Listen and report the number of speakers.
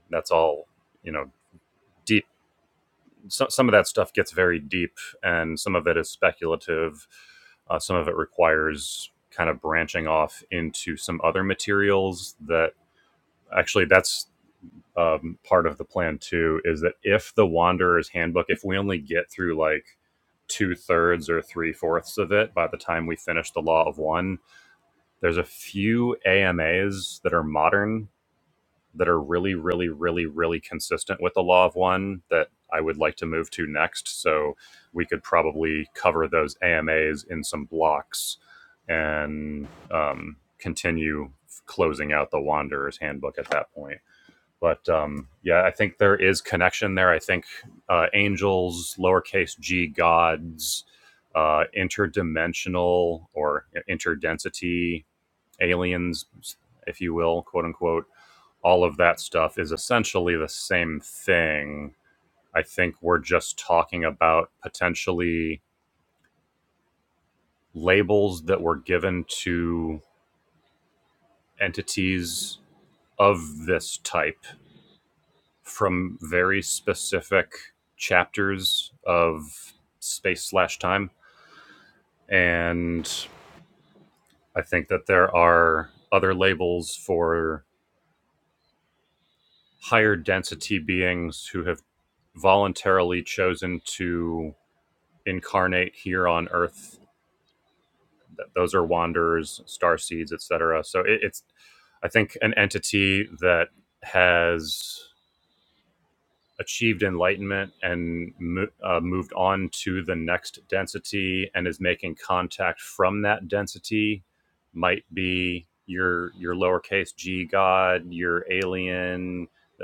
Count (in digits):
1